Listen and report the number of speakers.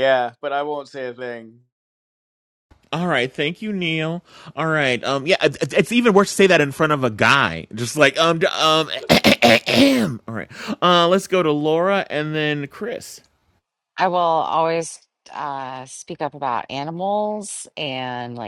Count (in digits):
3